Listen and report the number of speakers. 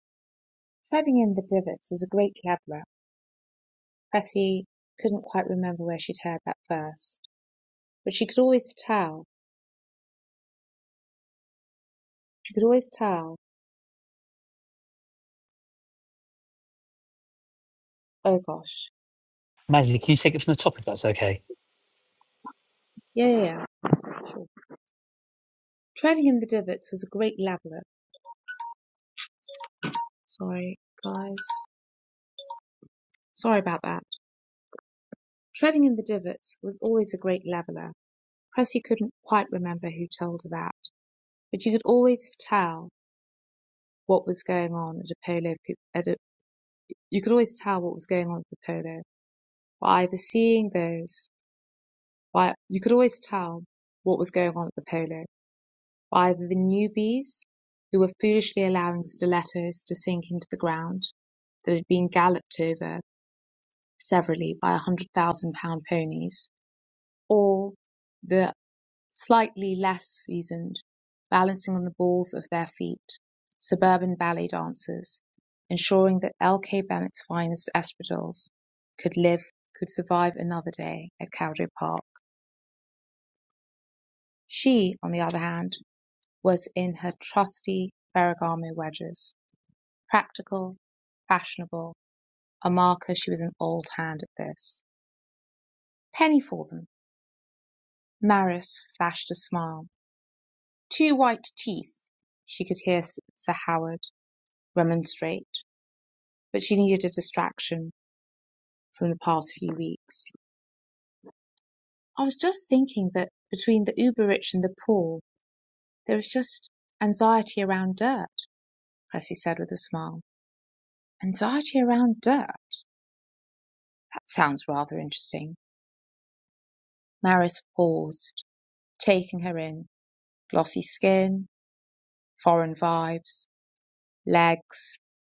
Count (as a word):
two